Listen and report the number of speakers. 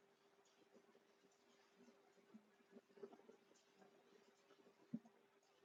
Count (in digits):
0